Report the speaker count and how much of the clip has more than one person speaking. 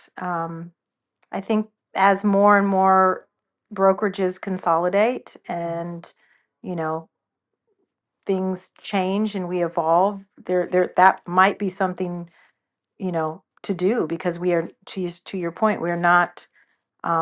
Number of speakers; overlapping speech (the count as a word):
one, no overlap